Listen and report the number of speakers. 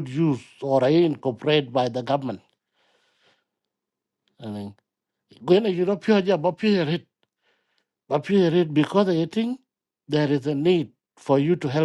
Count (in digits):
1